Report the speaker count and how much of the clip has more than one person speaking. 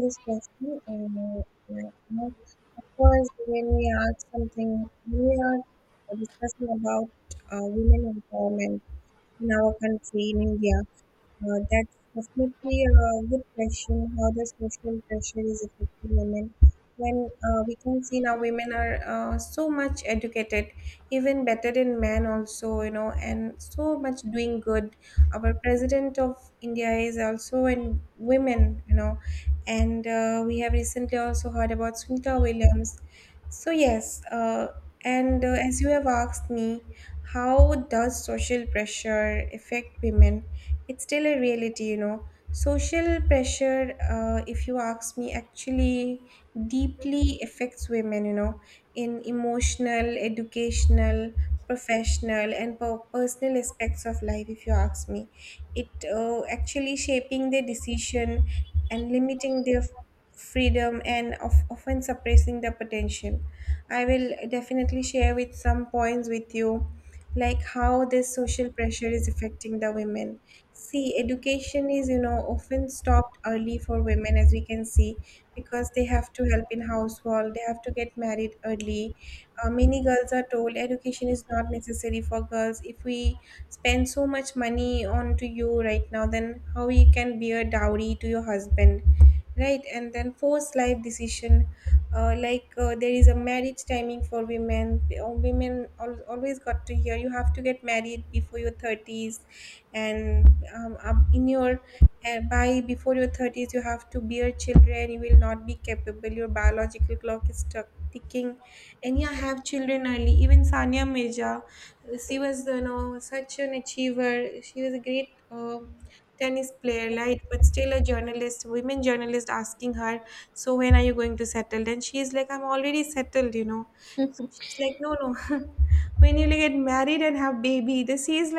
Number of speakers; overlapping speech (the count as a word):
one, no overlap